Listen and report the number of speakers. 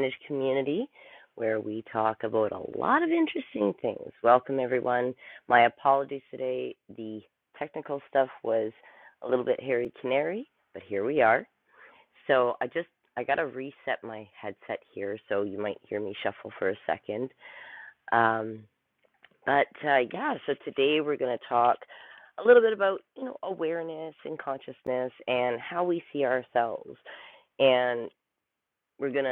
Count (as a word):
one